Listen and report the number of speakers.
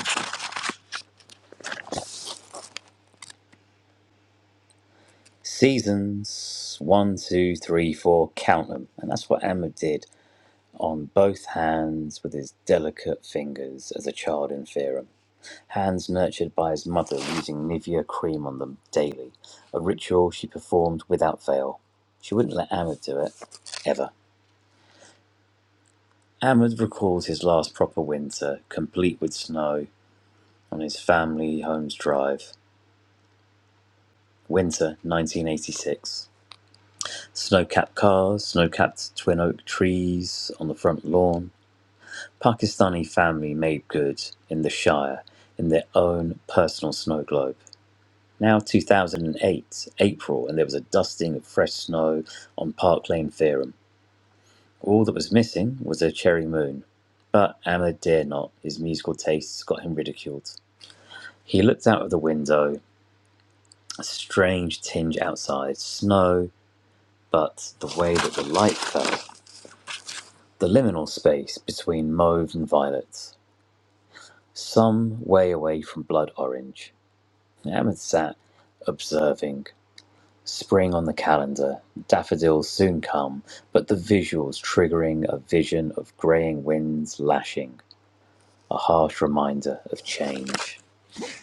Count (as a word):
one